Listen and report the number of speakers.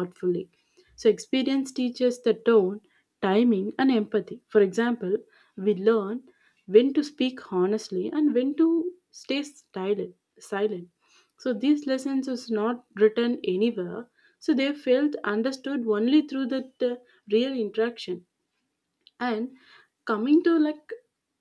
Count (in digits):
1